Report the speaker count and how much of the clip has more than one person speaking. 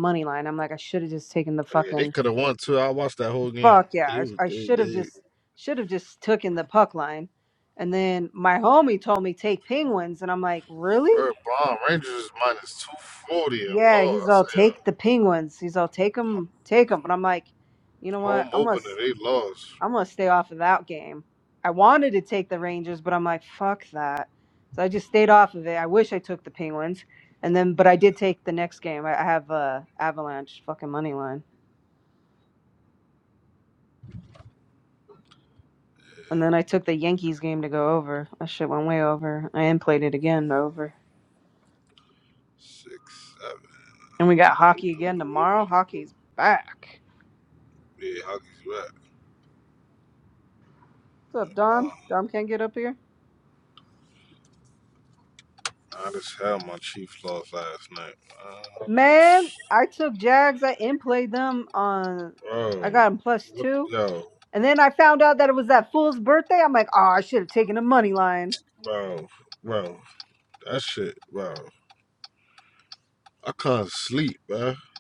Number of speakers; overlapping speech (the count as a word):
two, about 6%